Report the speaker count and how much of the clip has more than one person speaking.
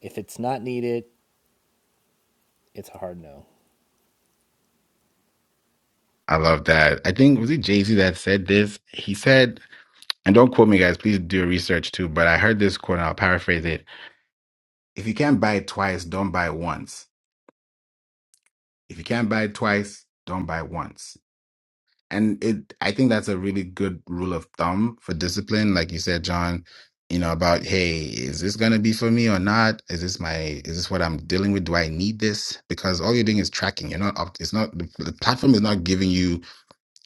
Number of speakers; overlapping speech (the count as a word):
two, no overlap